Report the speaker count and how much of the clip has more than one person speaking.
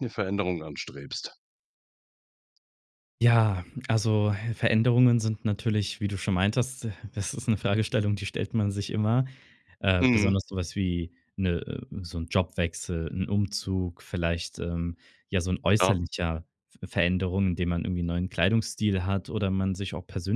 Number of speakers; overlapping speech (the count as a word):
two, about 3%